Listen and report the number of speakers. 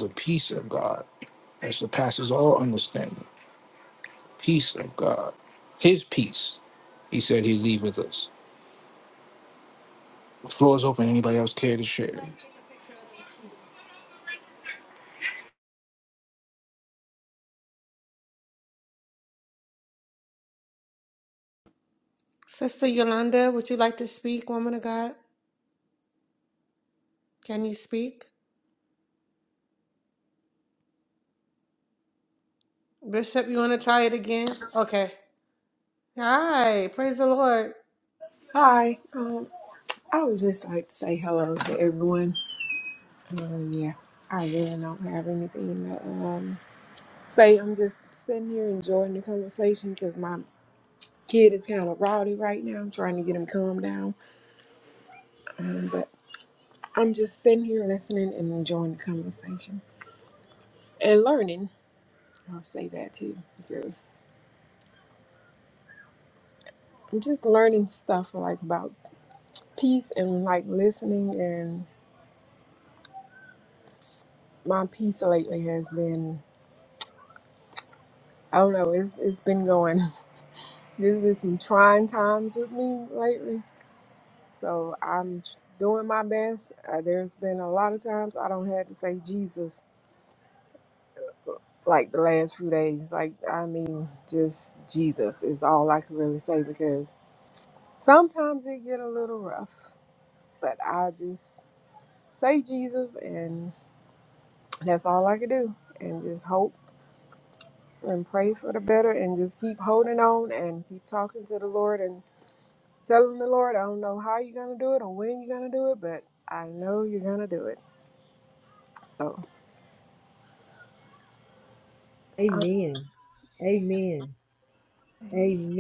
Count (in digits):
4